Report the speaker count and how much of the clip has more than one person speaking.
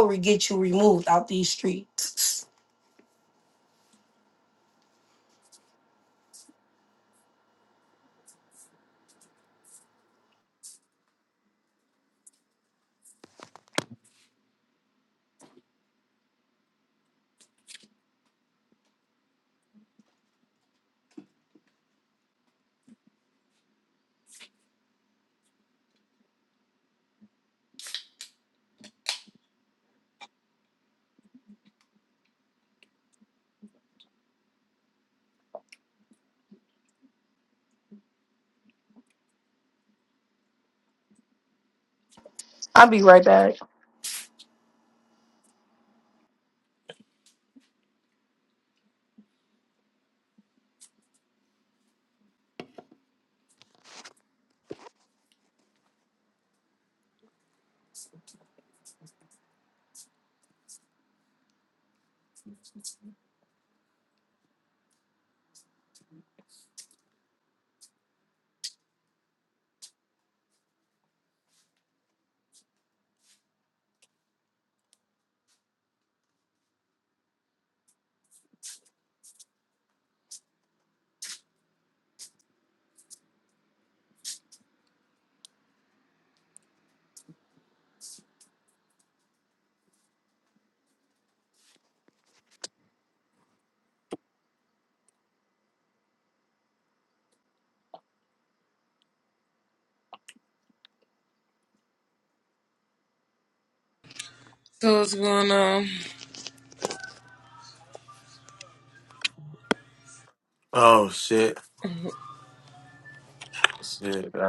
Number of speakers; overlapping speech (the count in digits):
3, no overlap